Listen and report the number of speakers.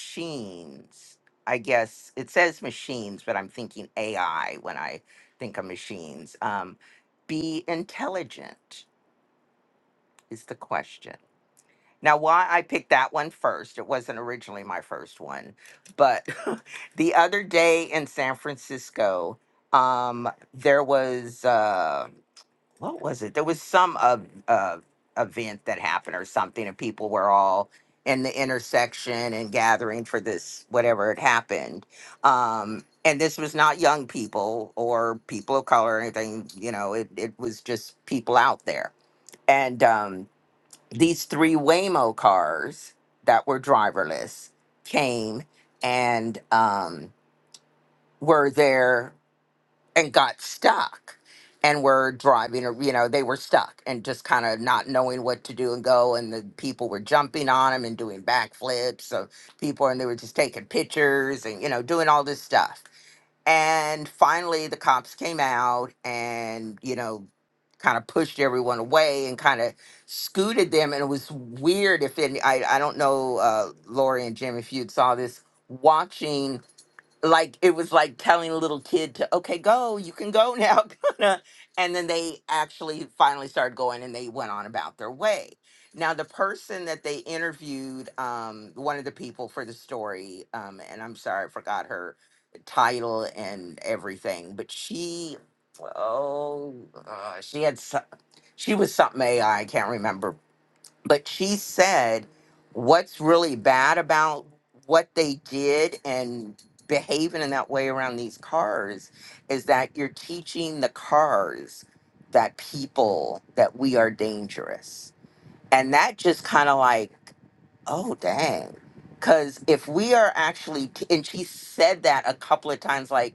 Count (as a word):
one